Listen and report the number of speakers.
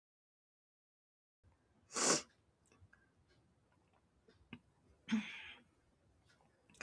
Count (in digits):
0